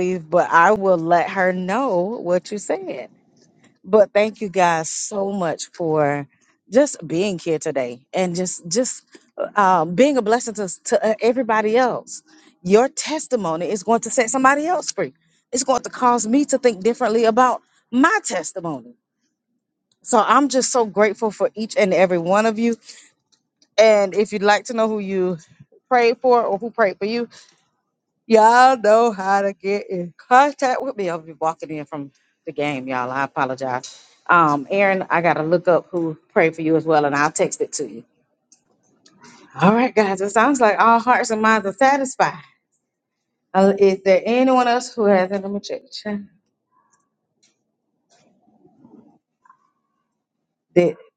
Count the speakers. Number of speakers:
one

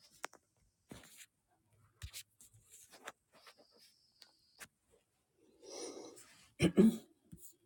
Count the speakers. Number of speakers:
zero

